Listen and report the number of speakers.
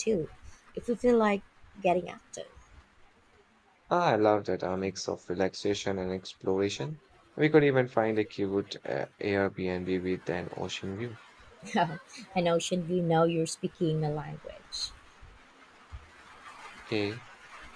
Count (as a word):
two